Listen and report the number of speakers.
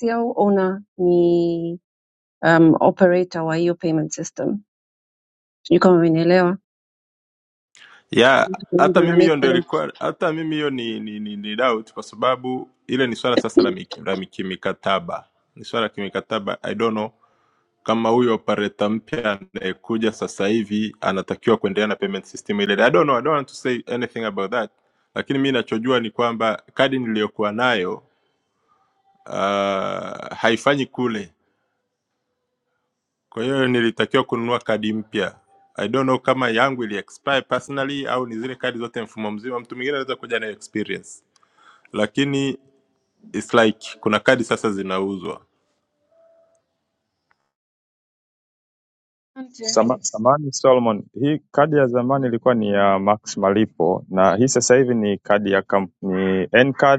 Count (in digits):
3